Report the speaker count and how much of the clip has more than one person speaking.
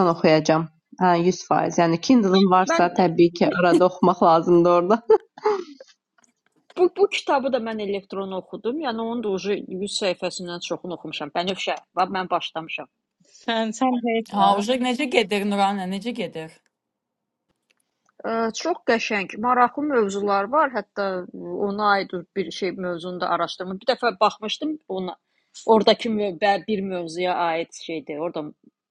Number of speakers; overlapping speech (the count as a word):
four, about 3%